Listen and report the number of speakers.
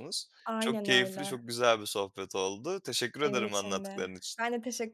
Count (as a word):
two